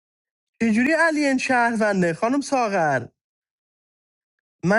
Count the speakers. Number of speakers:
1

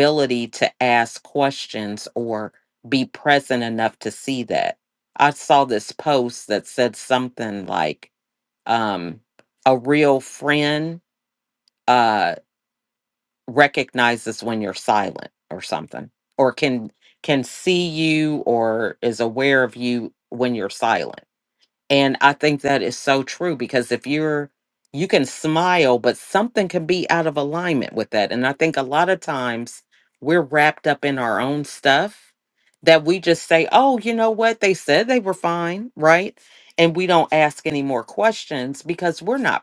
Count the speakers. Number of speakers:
1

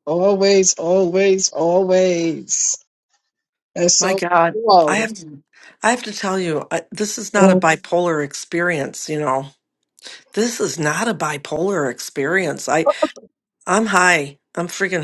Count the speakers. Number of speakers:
2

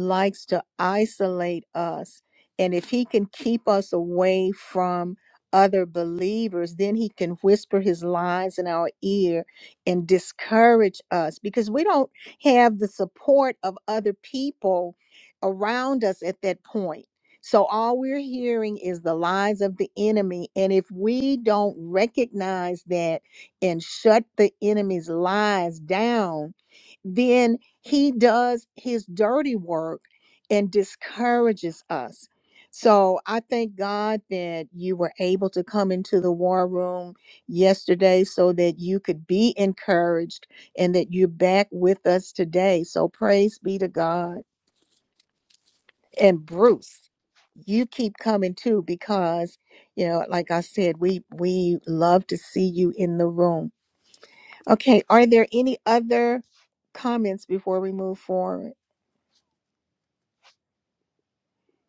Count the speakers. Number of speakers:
1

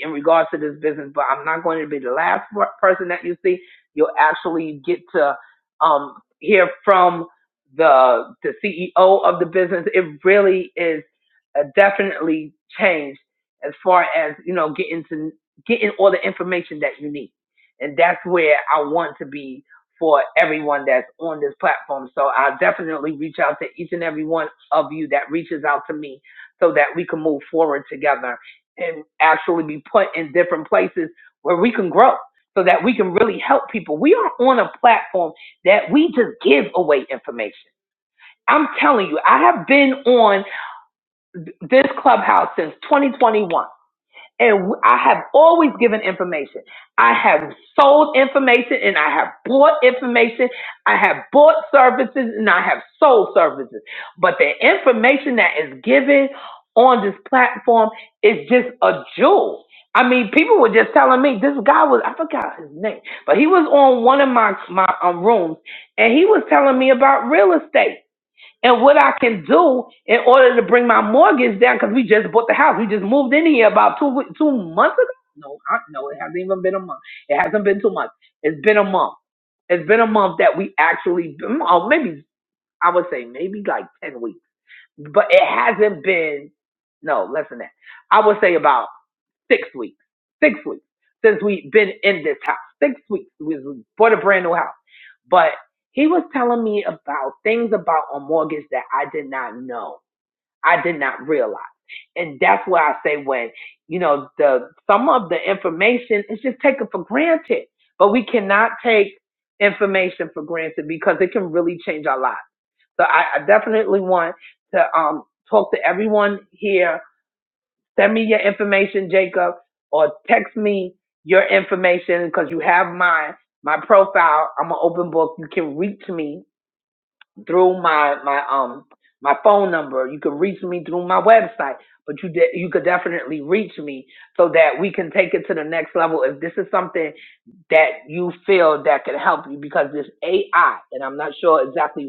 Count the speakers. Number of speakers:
1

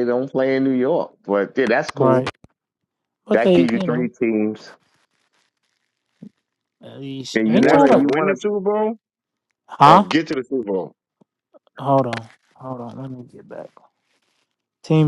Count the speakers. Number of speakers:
3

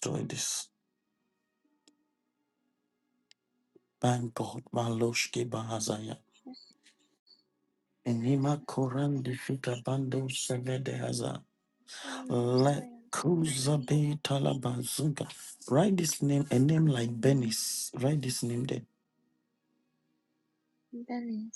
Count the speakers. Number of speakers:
2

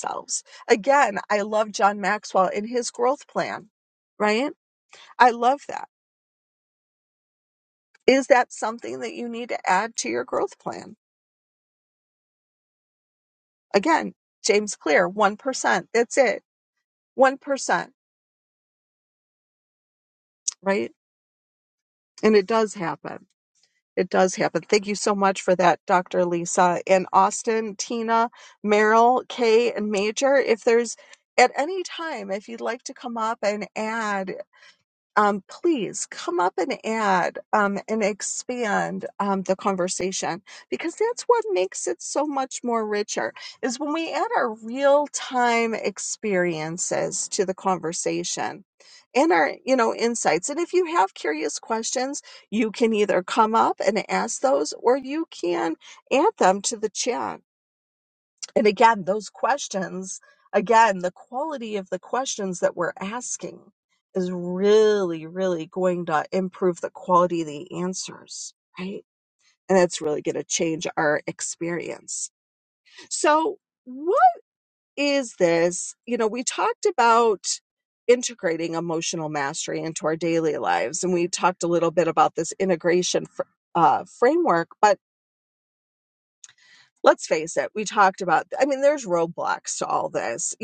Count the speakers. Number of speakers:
1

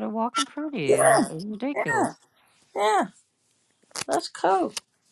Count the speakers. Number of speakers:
2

